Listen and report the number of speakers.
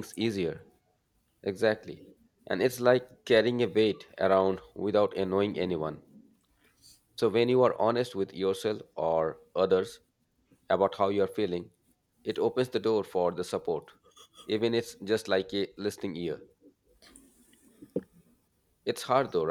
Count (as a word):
one